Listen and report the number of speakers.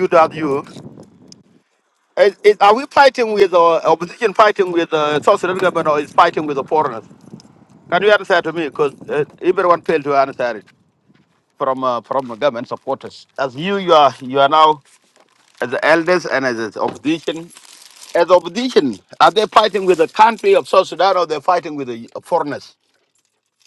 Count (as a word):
one